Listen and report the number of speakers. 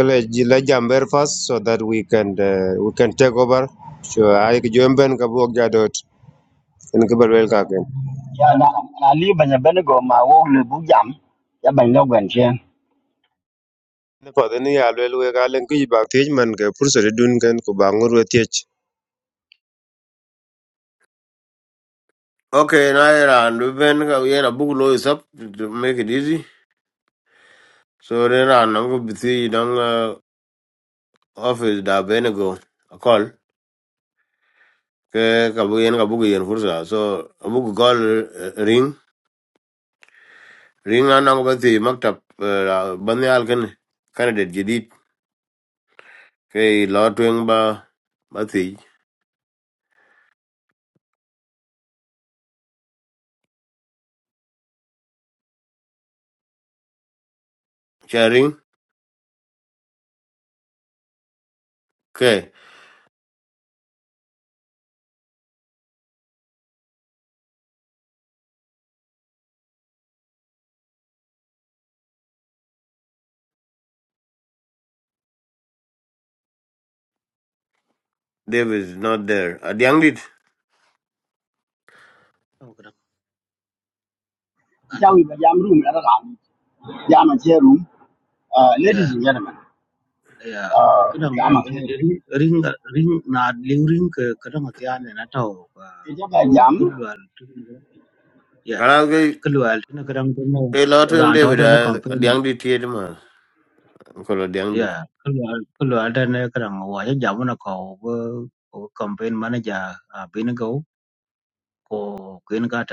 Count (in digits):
4